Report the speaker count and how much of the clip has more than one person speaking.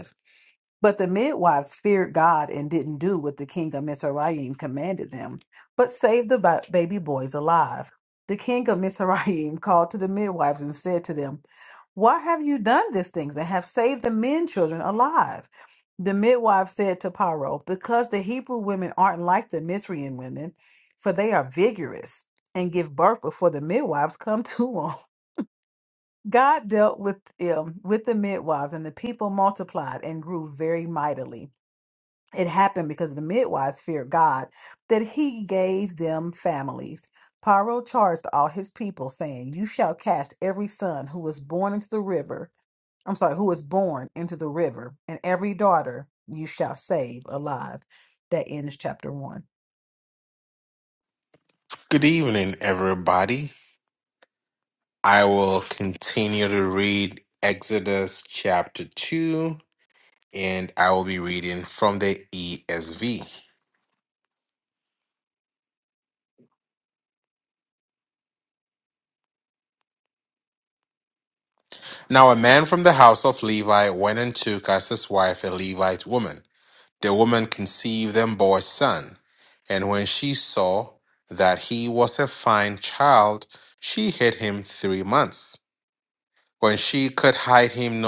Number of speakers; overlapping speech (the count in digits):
2, no overlap